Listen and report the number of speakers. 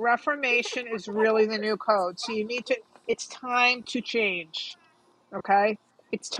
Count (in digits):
1